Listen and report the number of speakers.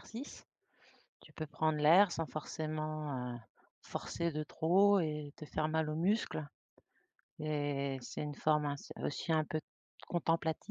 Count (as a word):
one